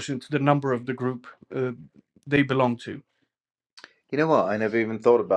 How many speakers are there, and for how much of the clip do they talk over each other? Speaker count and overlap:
2, no overlap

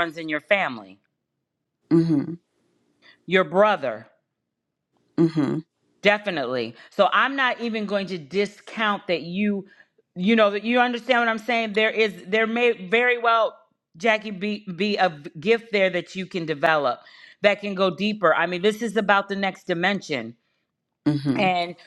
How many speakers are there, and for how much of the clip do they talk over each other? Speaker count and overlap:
2, under 1%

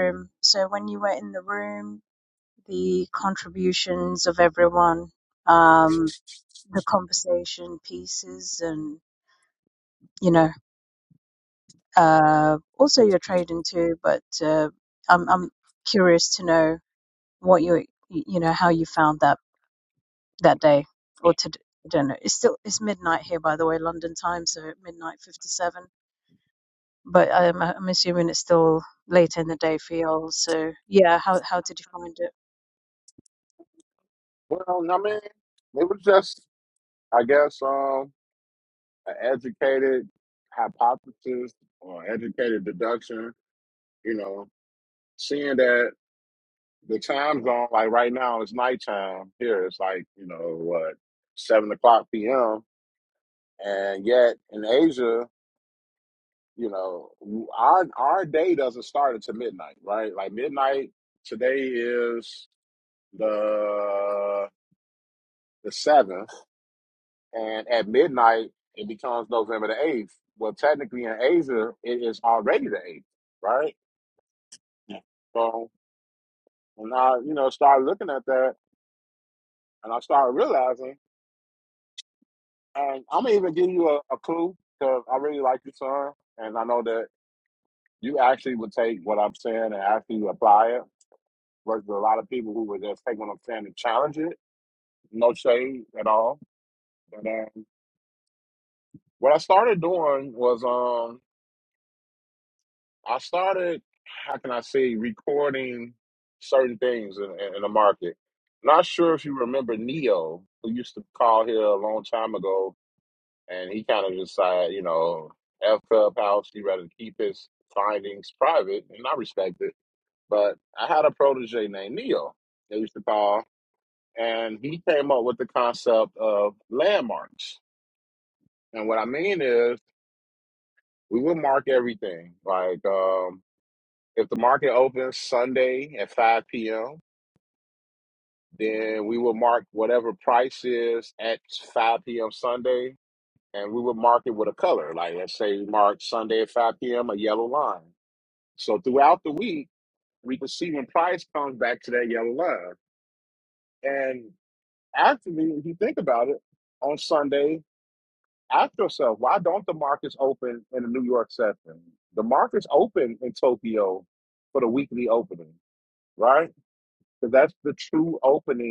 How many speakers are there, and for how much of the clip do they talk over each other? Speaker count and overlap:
2, no overlap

